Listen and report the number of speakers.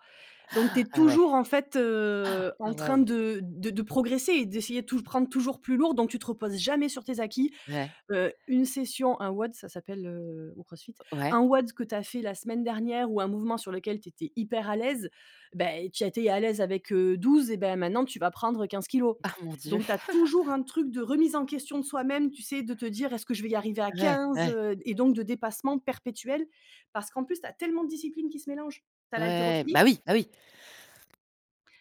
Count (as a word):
two